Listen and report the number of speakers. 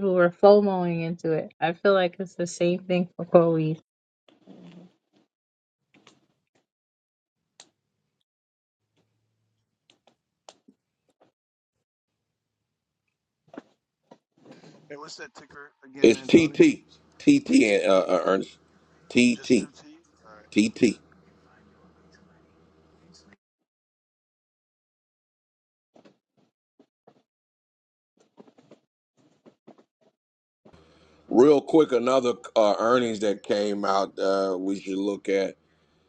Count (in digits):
3